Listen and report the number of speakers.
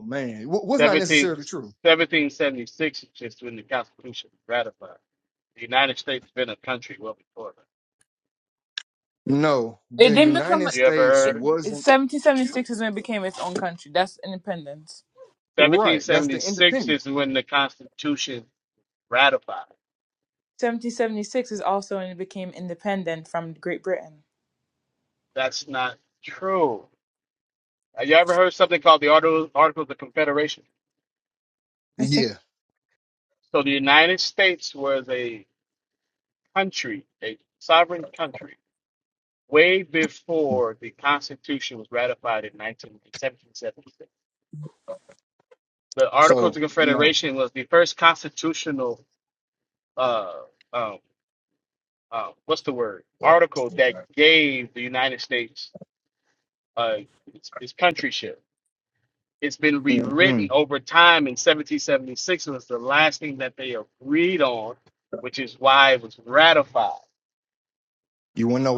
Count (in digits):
3